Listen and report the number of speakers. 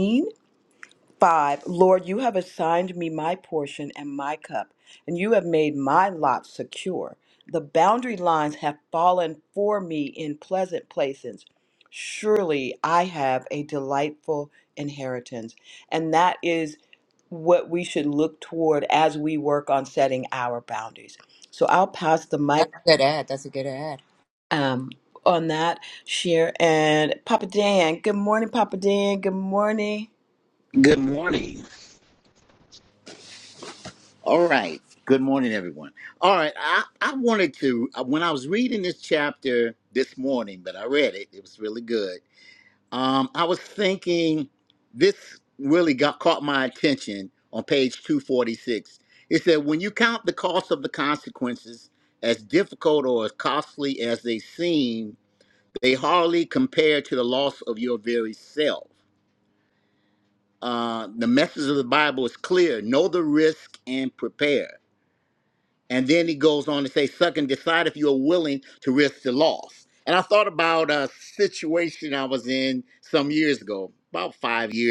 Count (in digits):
3